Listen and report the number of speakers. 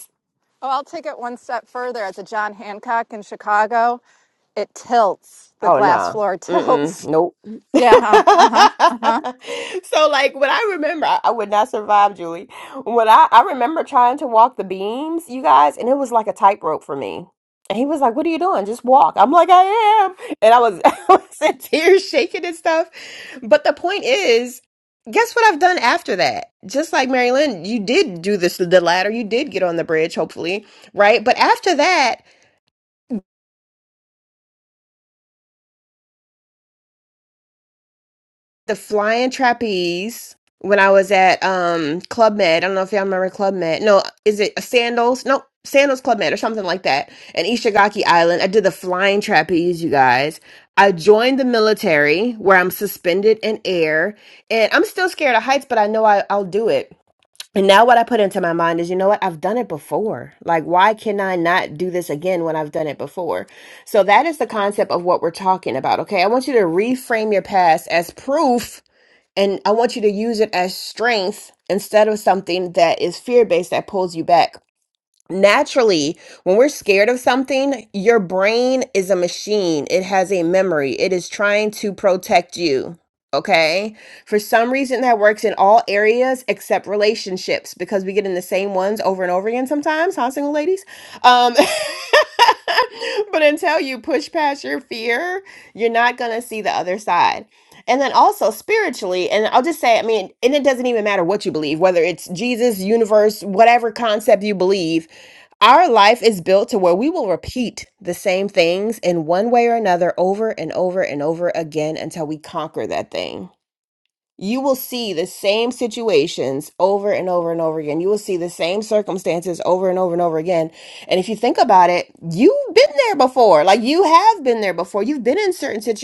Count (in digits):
2